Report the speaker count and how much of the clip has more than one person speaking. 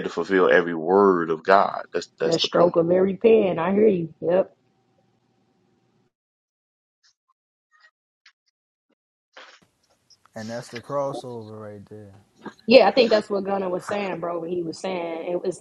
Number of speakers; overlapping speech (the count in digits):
3, about 3%